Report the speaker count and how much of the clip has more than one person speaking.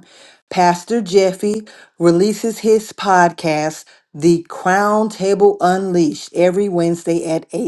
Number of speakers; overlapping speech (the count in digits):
1, no overlap